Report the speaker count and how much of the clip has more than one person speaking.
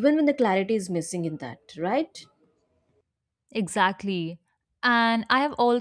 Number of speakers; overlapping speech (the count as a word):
two, no overlap